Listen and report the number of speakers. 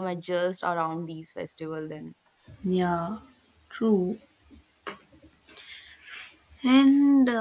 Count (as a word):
two